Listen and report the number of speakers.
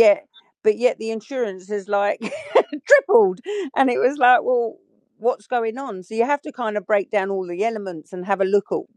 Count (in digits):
1